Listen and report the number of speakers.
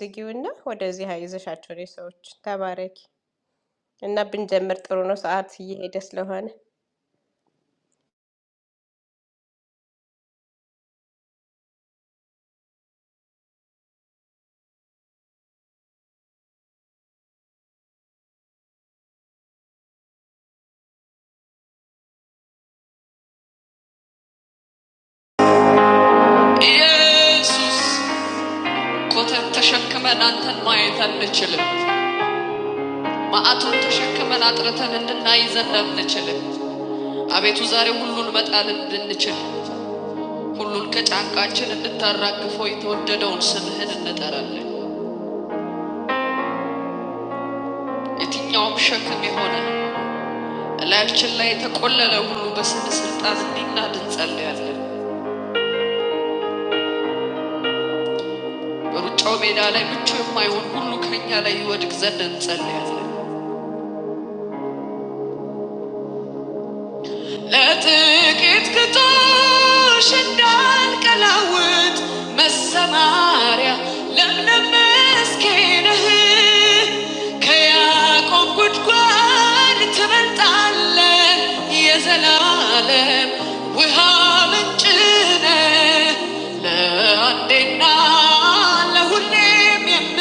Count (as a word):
two